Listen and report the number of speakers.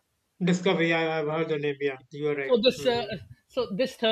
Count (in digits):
2